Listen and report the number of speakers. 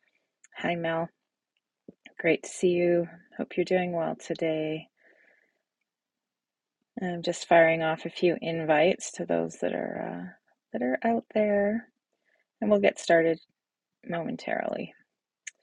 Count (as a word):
one